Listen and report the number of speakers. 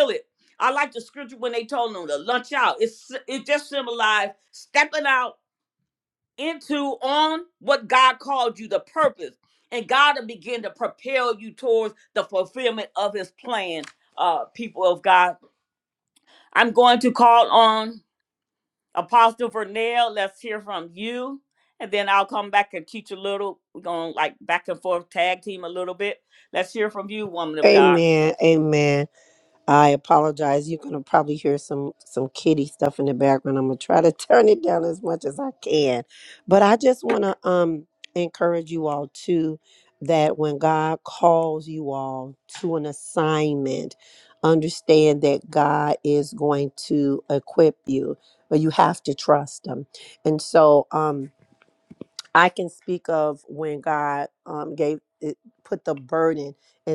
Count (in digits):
2